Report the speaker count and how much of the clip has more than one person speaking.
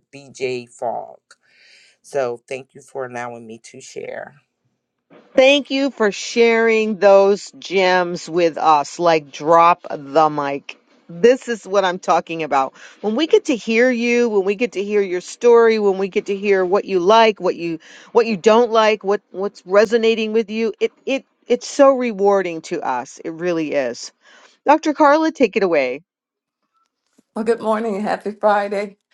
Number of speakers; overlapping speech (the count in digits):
3, no overlap